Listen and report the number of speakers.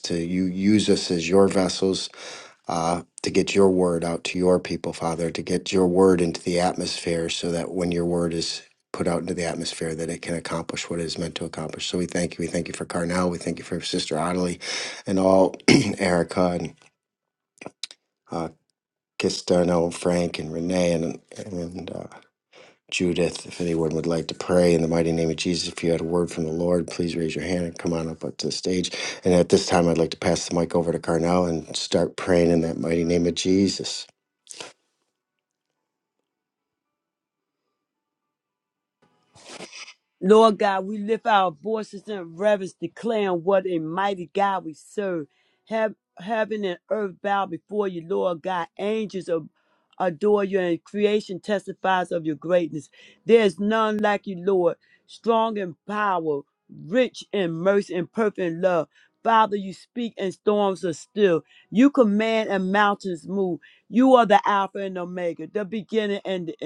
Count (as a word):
two